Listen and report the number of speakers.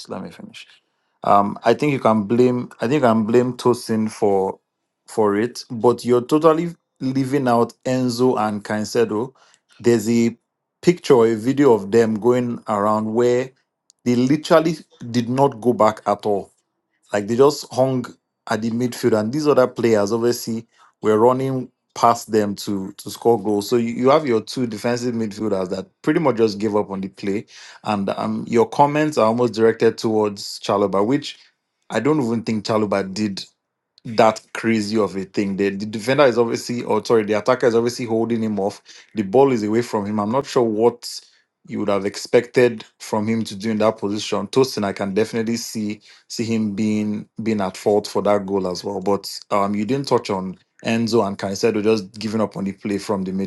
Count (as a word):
one